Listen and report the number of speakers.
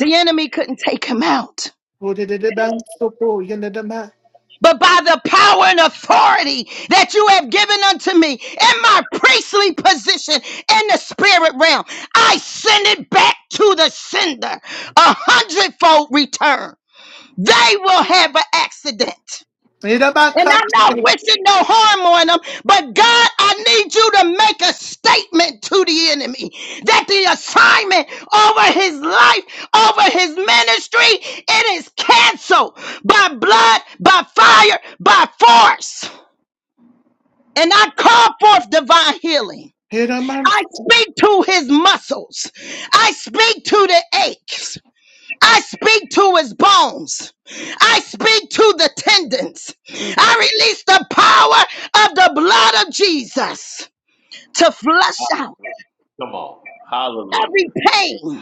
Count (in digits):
3